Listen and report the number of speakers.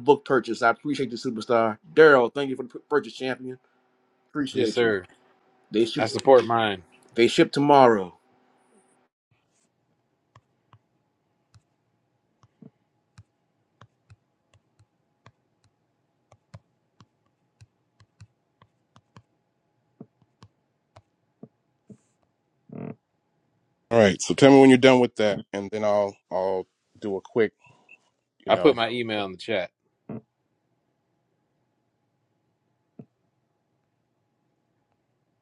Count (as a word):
three